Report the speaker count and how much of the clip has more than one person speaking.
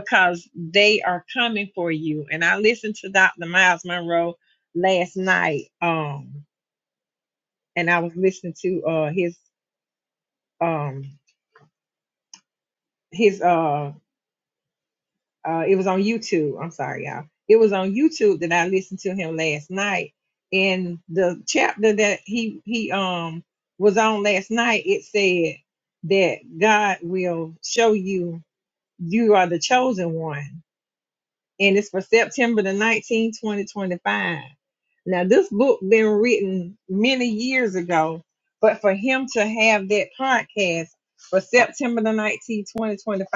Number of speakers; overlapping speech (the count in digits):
1, no overlap